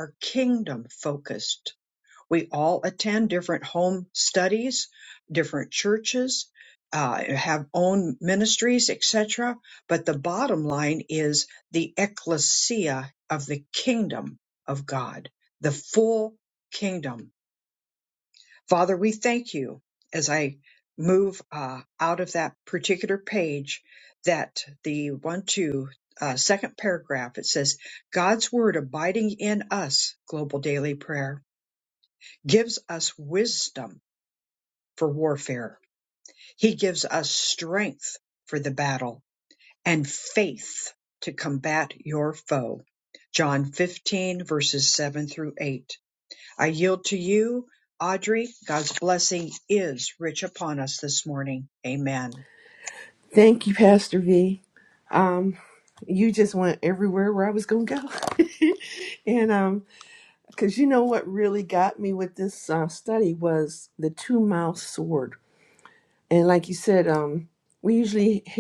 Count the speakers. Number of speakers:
two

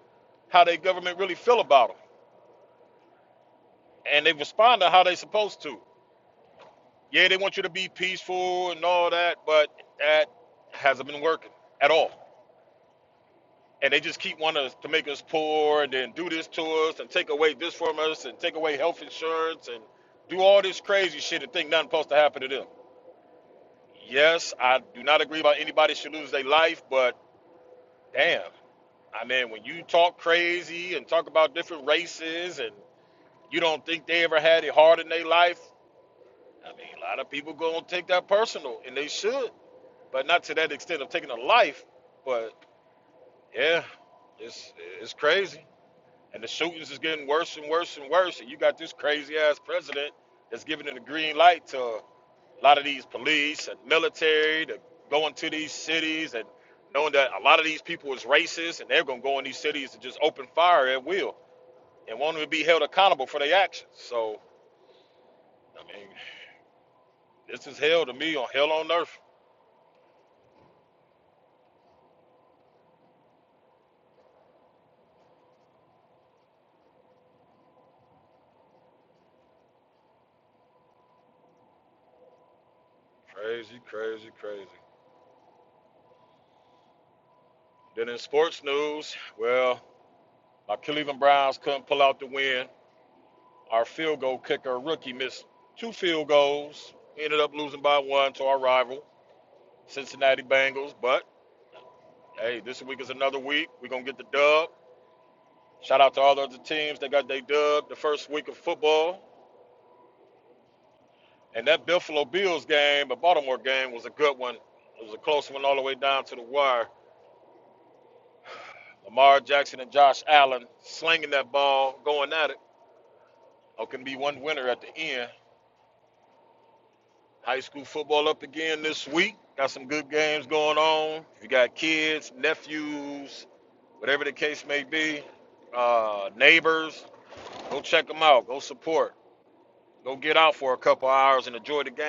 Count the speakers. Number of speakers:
one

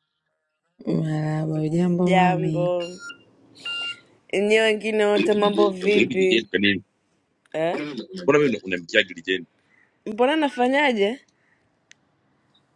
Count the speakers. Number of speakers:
three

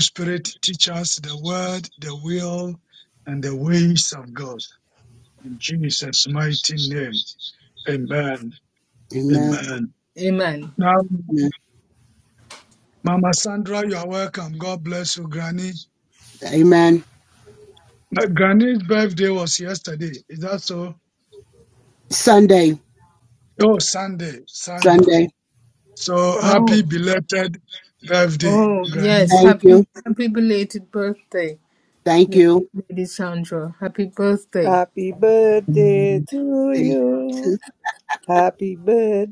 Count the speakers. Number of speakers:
four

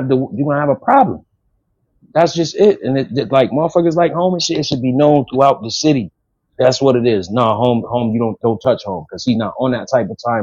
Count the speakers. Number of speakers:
one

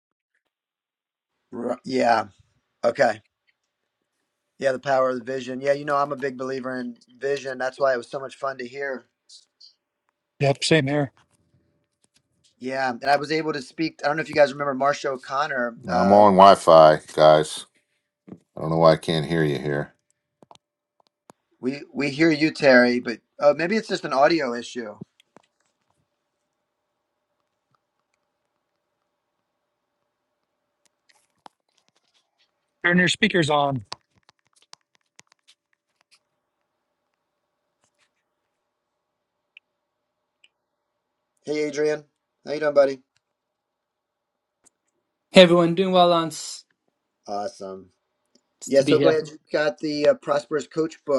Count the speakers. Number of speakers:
four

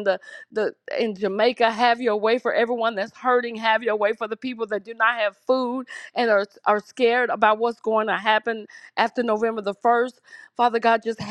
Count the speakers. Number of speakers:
one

